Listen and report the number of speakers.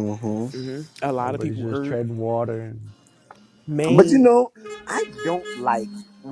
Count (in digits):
3